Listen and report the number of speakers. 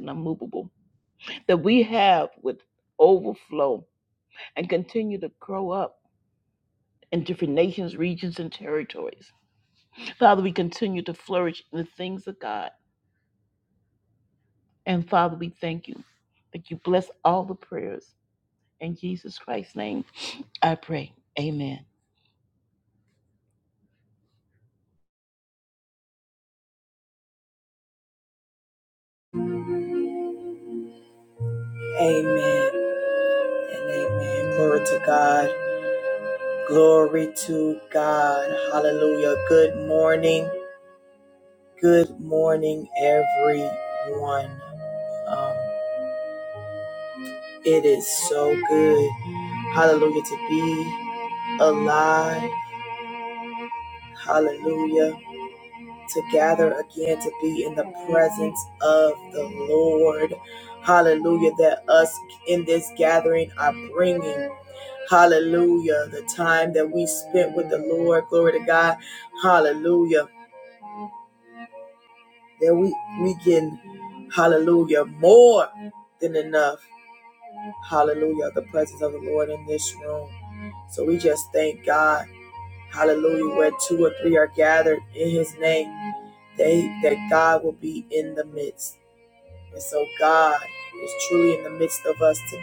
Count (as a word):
two